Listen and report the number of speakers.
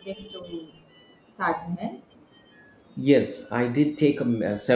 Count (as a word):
two